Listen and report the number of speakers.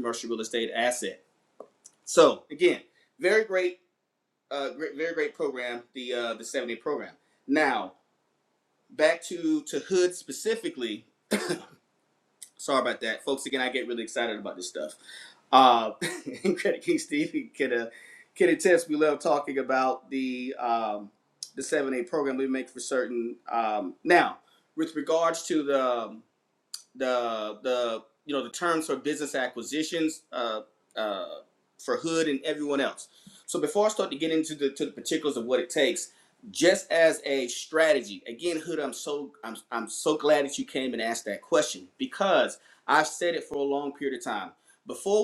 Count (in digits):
1